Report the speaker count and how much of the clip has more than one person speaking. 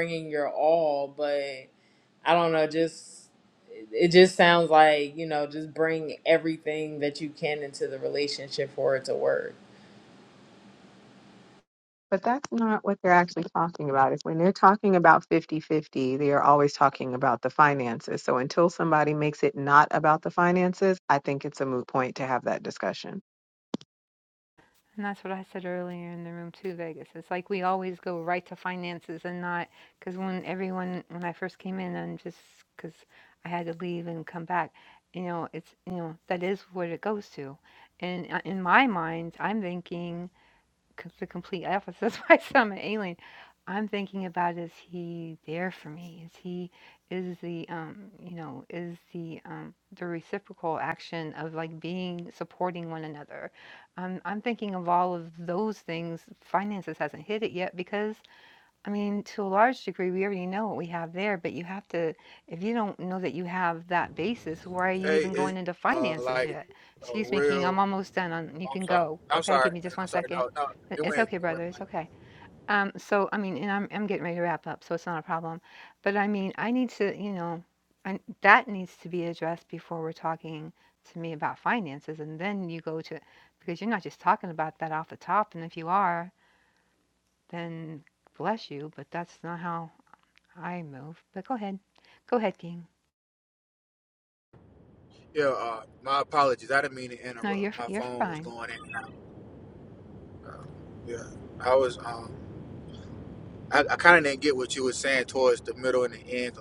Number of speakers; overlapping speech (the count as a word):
four, about 5%